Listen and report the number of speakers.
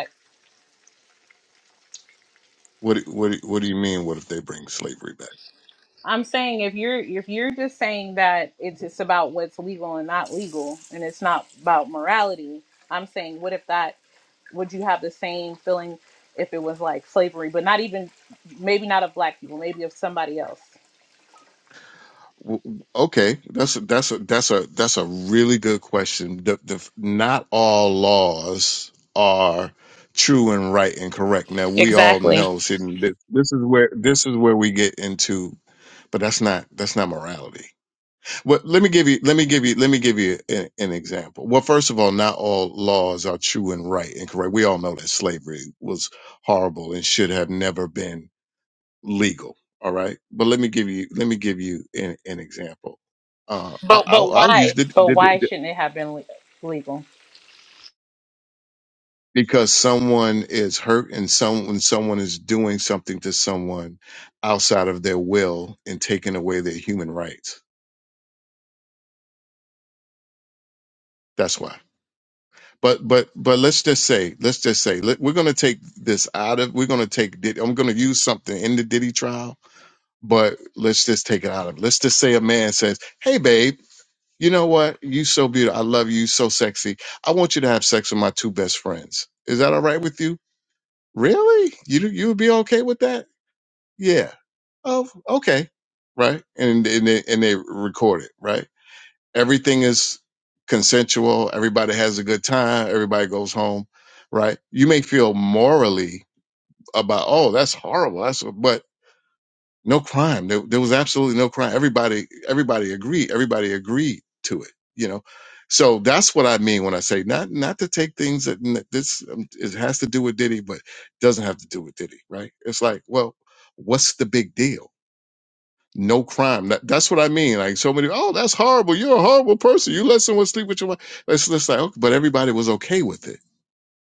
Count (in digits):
2